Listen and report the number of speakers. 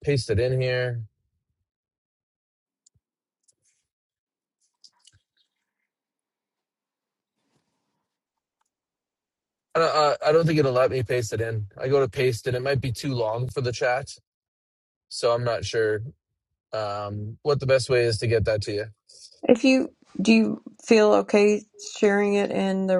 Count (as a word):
two